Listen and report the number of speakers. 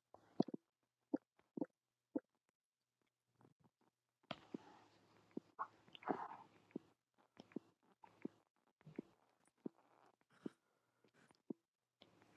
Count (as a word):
zero